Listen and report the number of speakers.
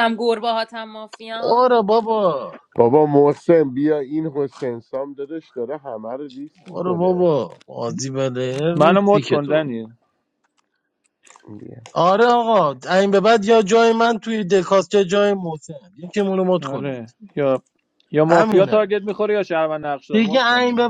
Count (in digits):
4